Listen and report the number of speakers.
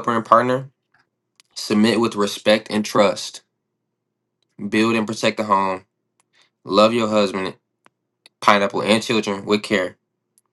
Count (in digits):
1